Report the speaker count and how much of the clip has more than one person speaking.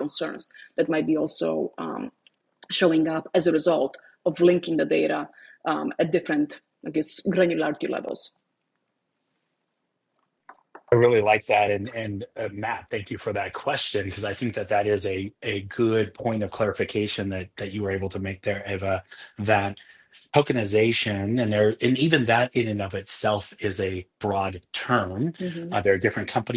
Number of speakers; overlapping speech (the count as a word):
two, under 1%